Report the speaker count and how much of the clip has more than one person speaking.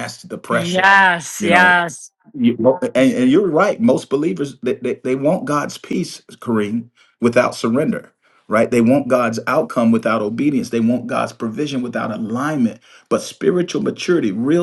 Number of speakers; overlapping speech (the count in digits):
2, about 5%